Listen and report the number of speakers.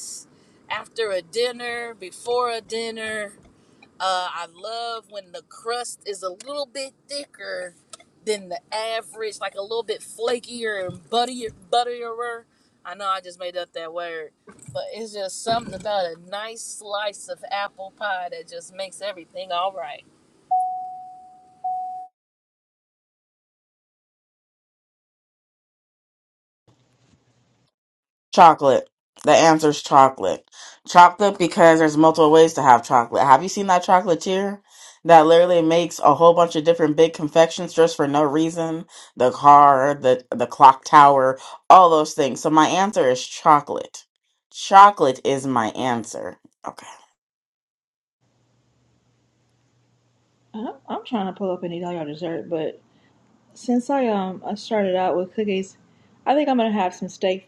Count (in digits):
3